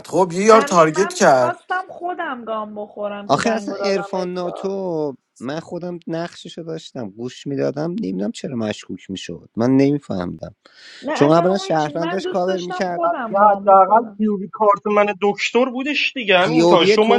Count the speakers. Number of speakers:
four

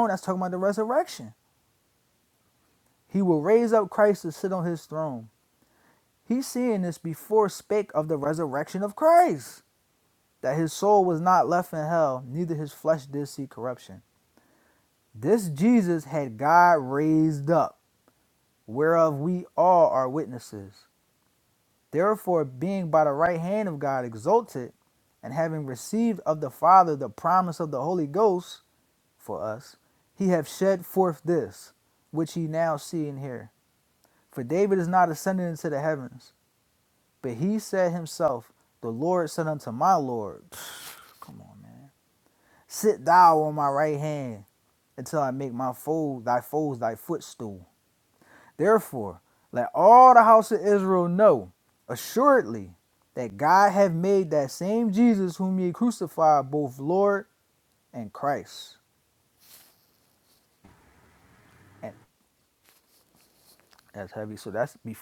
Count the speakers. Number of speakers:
one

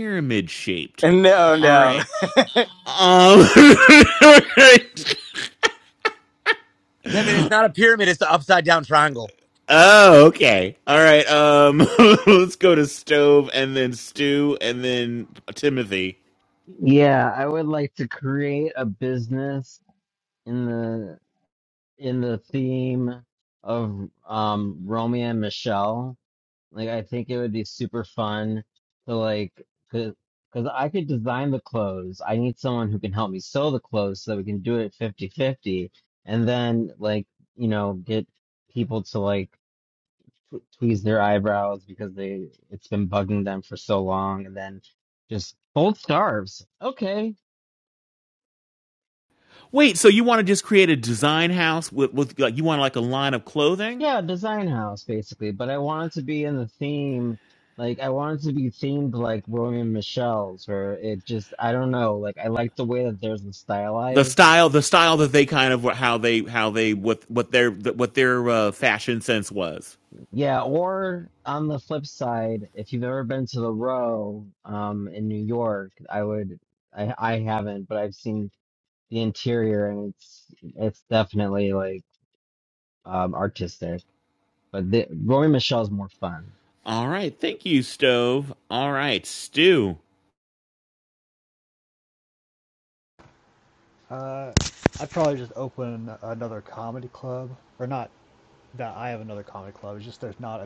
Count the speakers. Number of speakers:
five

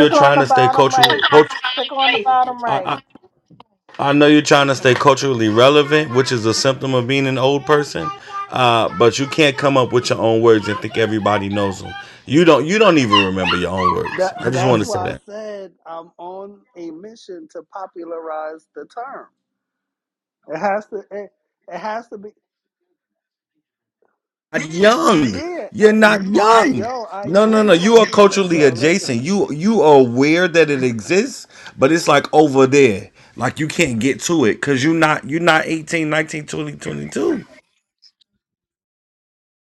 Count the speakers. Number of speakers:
three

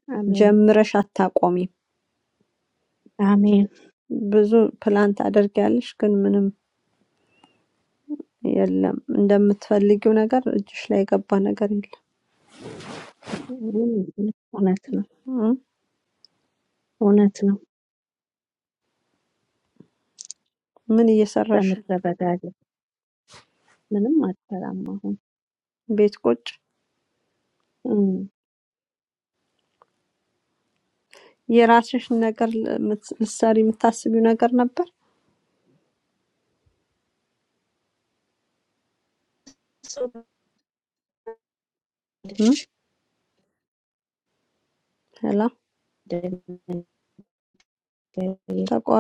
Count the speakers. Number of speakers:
two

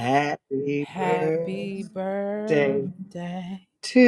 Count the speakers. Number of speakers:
two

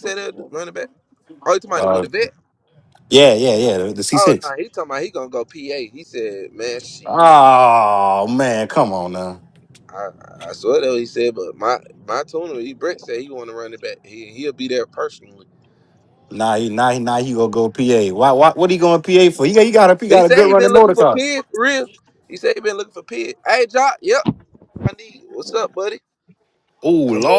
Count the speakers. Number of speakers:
two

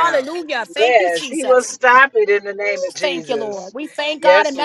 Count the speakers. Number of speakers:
two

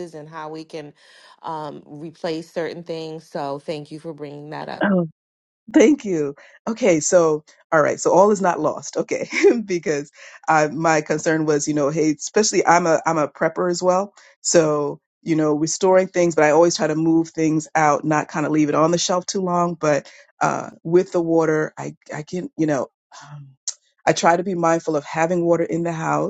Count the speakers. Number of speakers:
two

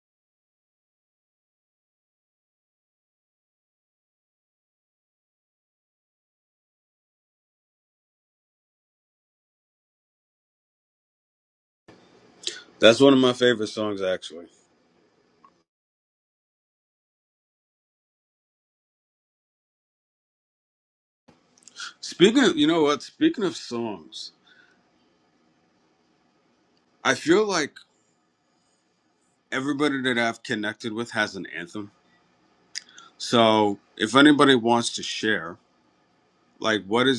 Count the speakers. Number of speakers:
one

